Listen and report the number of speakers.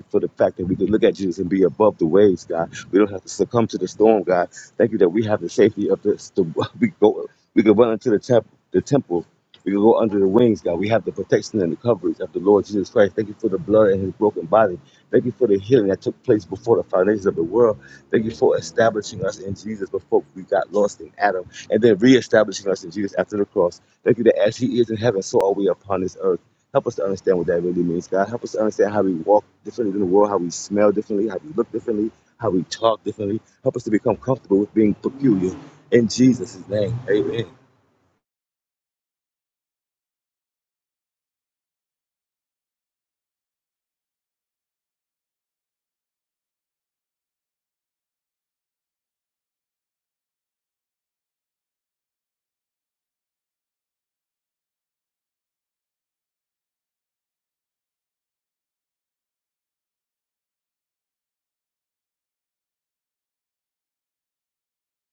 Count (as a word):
one